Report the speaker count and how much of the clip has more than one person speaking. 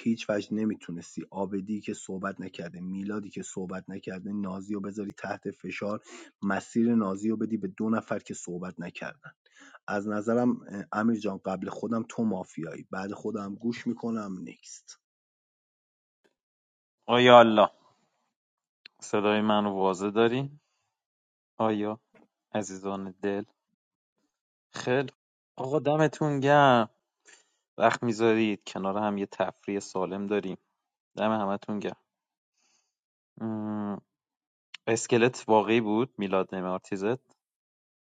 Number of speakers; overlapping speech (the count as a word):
two, no overlap